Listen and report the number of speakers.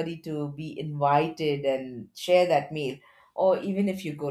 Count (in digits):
1